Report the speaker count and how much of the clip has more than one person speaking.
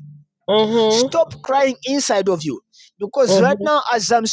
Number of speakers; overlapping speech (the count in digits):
2, about 13%